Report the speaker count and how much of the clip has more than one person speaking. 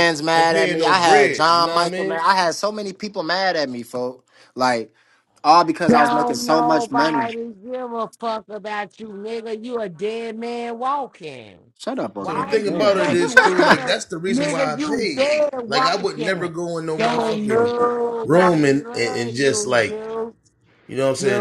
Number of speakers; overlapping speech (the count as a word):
three, about 46%